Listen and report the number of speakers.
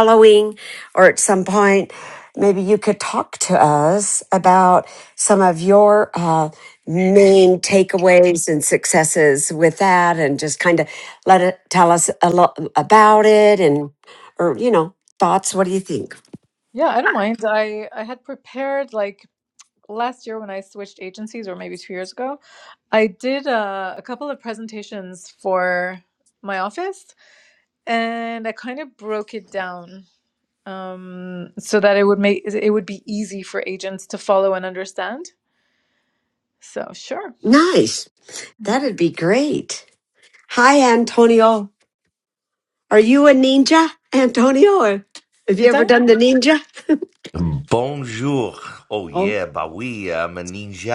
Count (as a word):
three